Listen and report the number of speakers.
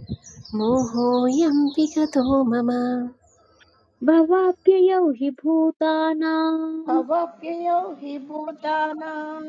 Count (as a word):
three